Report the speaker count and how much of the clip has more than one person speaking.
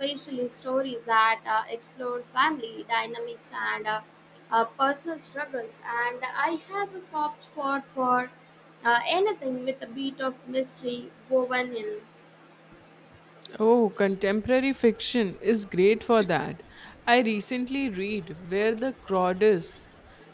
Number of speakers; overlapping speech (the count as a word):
two, no overlap